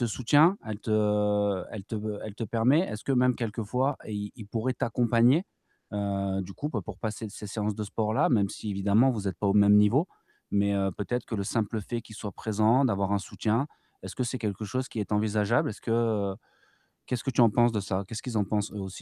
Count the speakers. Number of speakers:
1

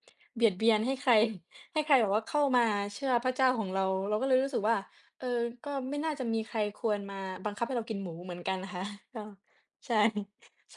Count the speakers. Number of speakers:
1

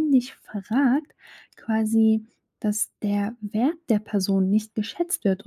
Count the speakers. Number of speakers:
1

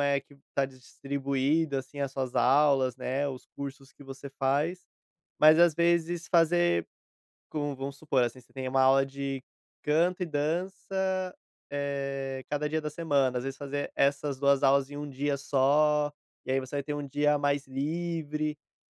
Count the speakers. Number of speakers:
1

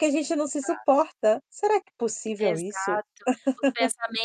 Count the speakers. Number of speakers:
2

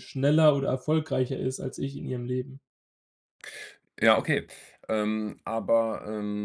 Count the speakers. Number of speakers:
2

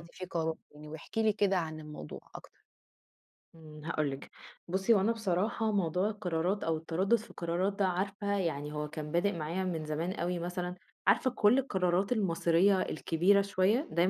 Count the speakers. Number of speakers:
2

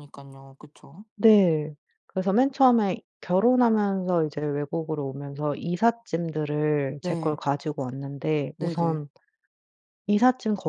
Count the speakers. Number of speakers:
2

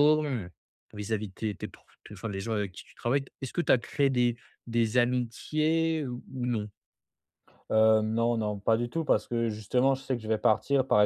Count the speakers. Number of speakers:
2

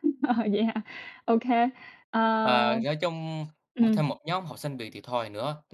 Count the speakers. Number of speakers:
2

